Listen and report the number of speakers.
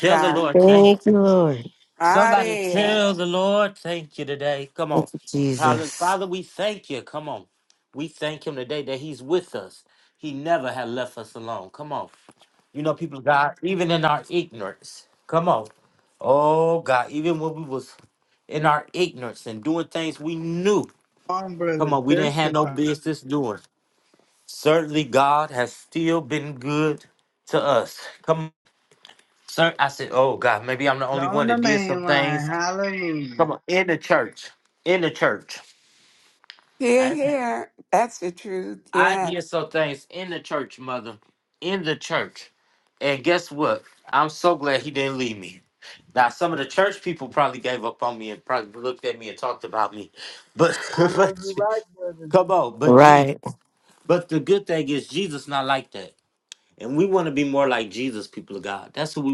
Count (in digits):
4